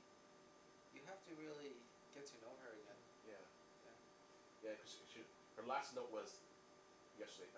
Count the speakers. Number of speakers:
two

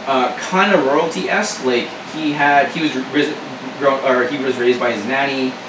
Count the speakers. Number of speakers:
one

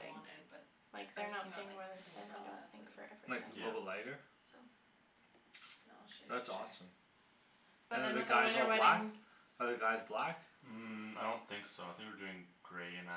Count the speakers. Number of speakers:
four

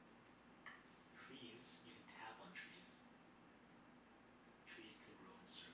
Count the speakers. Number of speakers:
one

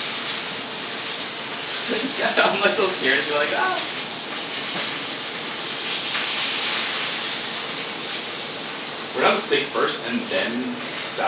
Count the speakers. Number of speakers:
two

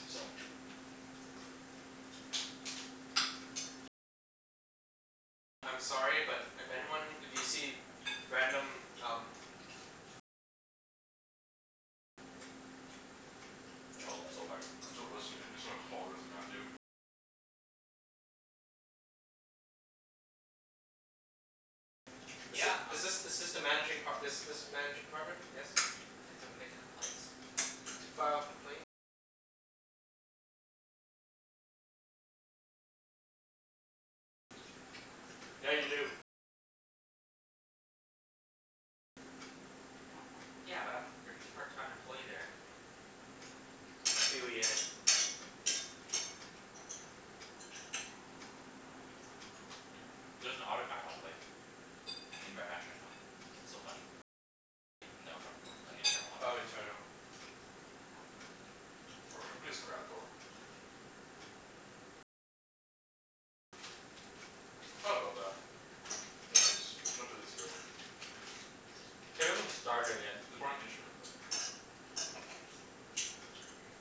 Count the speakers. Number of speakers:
three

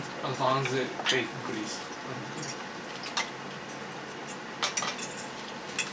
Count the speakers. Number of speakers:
one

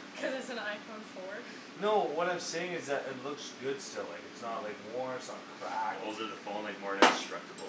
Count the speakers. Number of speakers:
three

